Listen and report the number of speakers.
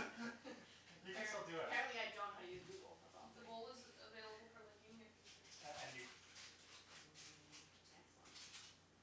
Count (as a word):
three